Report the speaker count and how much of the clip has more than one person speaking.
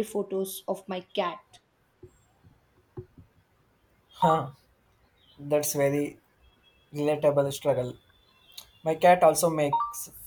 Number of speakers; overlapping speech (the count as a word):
two, no overlap